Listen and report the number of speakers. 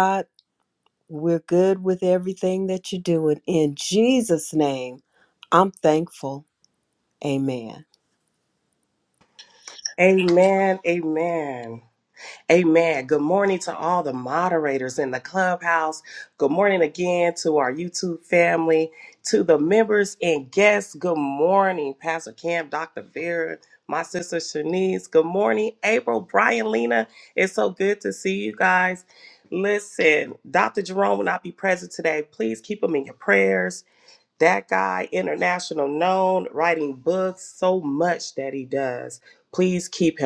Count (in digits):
2